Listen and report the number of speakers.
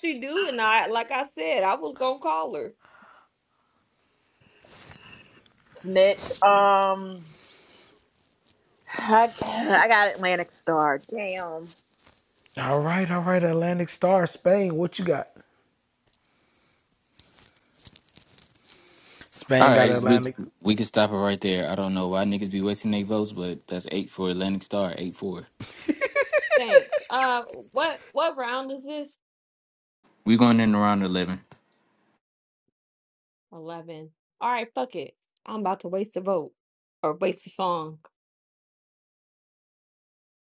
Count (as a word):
four